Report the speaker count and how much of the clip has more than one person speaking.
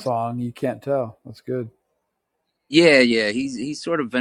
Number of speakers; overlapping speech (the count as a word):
two, no overlap